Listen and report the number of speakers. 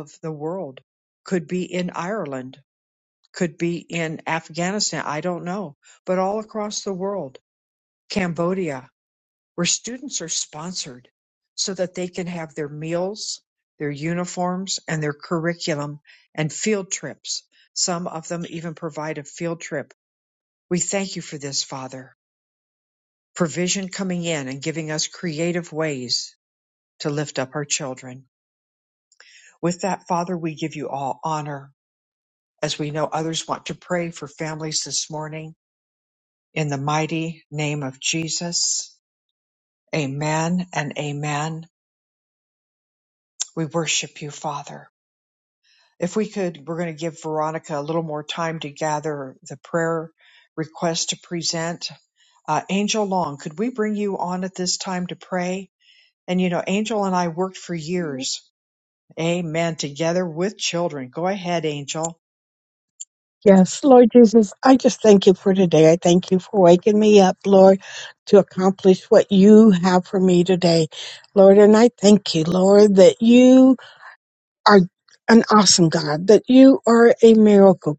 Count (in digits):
2